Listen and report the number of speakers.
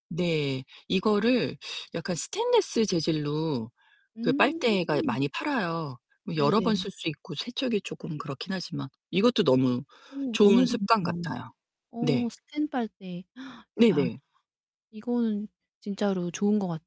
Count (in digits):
2